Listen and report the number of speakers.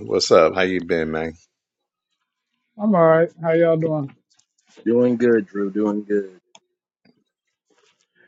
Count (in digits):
3